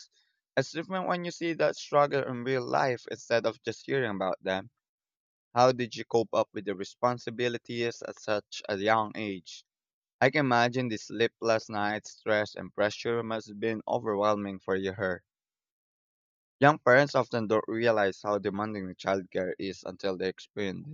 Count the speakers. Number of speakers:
one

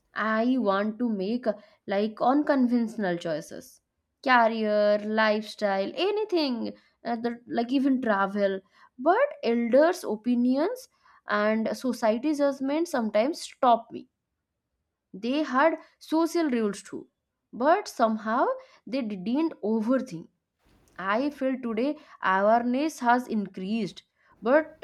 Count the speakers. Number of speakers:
one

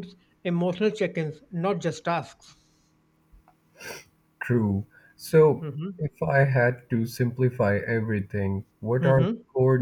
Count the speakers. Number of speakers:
two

